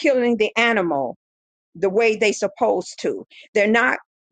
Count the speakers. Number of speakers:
1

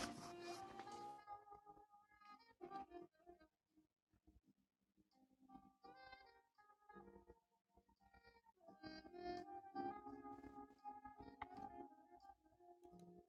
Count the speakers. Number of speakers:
0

